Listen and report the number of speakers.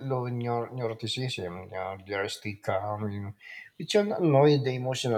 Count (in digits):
1